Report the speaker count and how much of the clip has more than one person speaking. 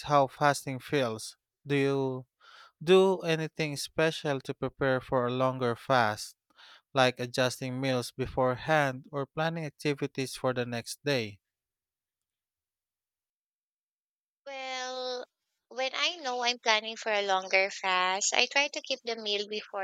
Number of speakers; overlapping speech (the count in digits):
2, no overlap